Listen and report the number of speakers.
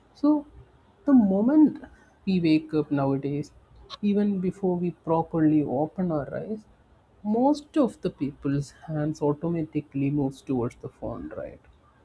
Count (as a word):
one